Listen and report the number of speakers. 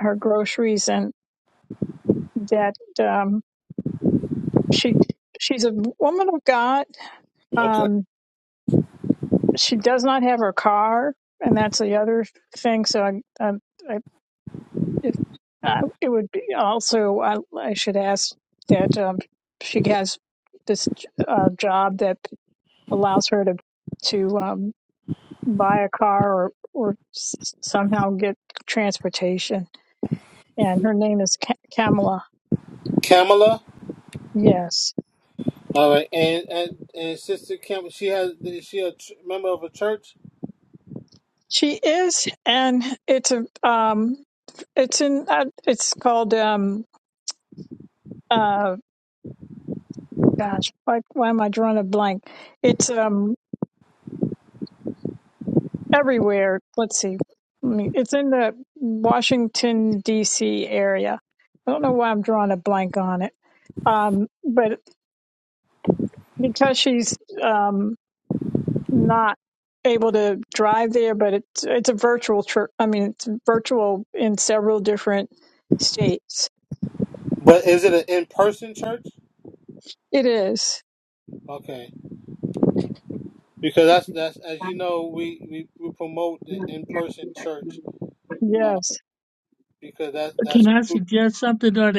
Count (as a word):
three